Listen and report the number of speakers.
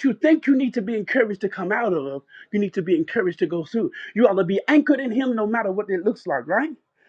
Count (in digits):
1